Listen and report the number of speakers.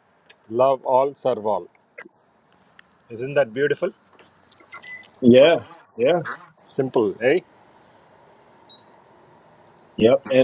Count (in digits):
2